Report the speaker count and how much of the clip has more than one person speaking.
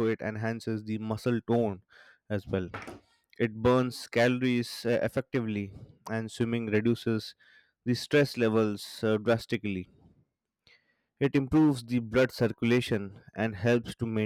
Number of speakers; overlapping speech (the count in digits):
1, no overlap